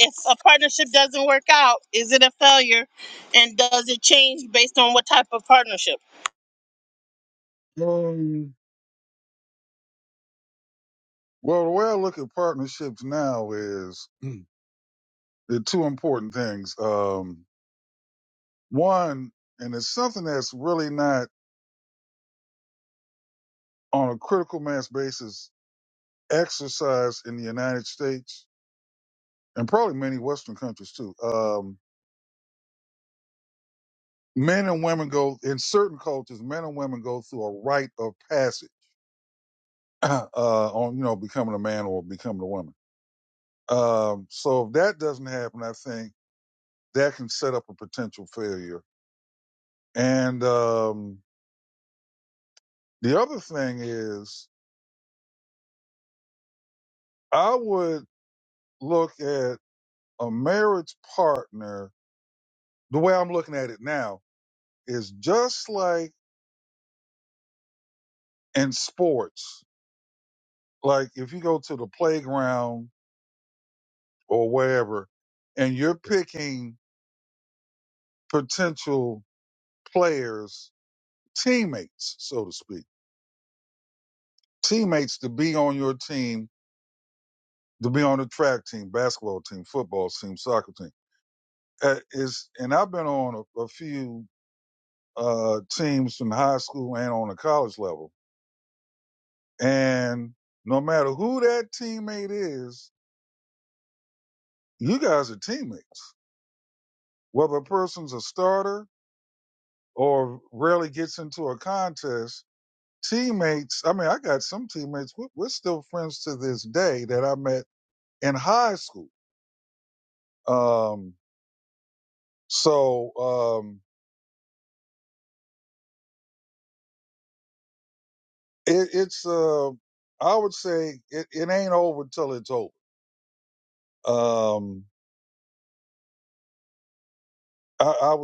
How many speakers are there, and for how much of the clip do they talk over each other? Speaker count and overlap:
2, no overlap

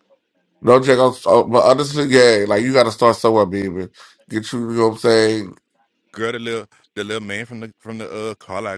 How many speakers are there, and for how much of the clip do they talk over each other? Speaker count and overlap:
2, no overlap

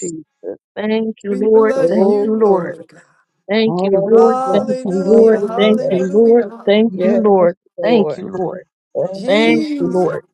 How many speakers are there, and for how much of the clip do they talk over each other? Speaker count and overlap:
3, about 61%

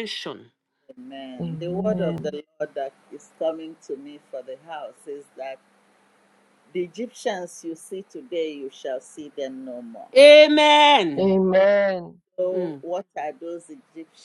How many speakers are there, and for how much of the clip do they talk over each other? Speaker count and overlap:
3, about 8%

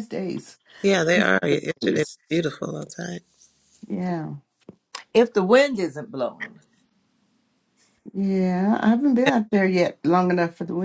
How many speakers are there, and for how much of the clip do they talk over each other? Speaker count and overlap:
3, about 3%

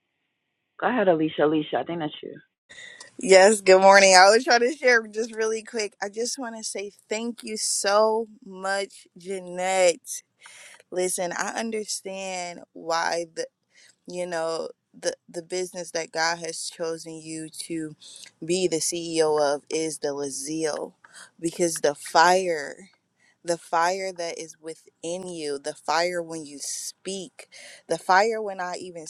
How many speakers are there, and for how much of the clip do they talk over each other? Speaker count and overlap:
2, no overlap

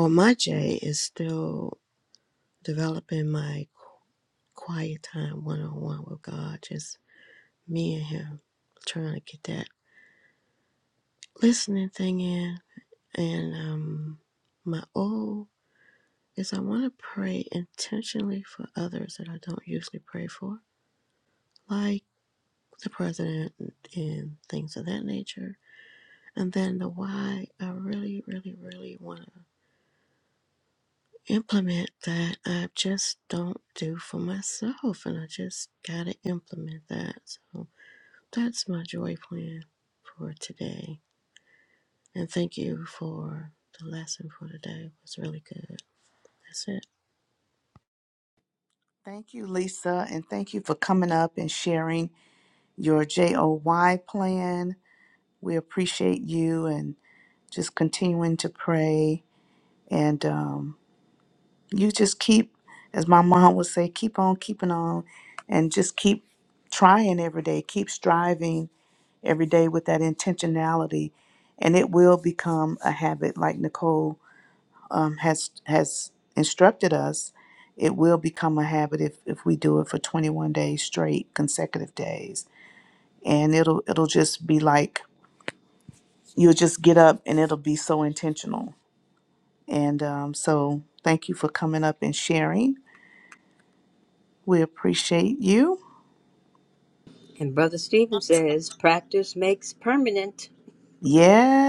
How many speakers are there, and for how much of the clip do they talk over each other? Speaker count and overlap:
3, no overlap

